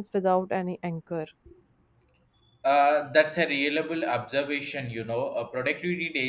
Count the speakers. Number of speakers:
two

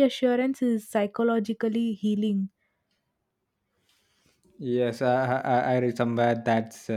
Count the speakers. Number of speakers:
two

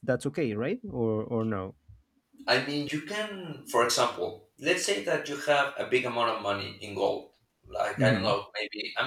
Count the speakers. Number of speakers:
two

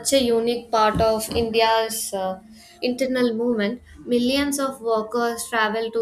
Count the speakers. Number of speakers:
one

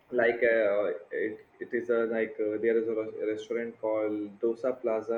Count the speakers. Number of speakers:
one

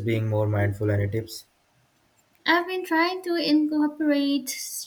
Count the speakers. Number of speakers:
two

